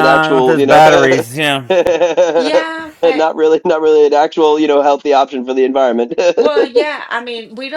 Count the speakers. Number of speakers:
3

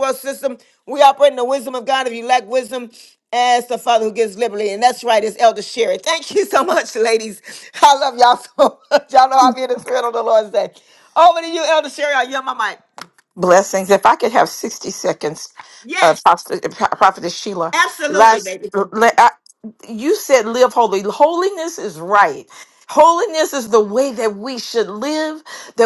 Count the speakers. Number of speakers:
2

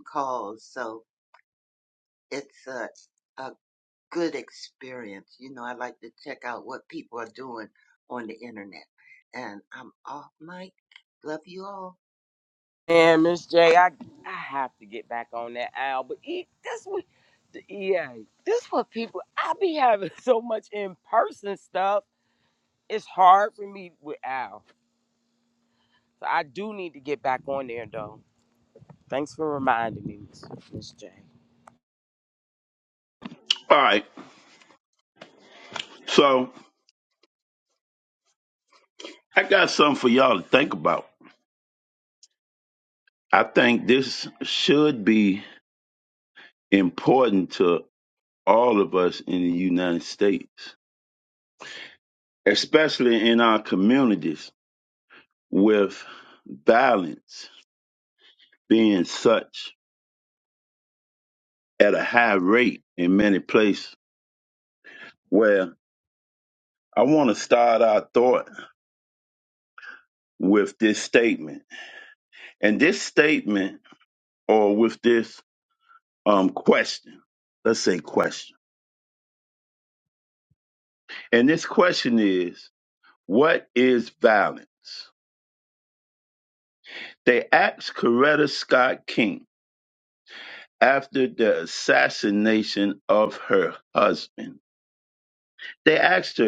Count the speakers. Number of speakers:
3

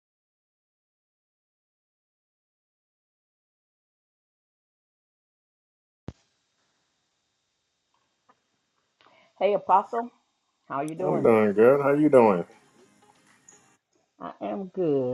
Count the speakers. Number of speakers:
2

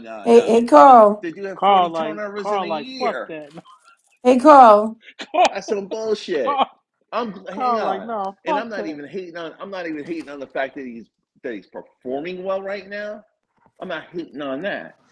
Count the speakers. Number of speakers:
3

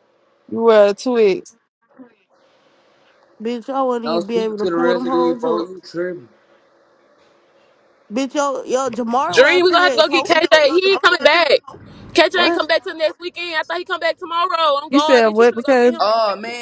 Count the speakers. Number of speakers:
4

